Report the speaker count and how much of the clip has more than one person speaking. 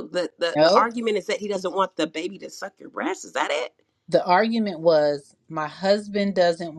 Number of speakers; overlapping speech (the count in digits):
2, about 5%